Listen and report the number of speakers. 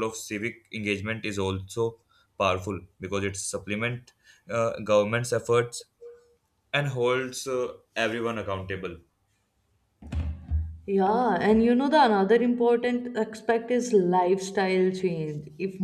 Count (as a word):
two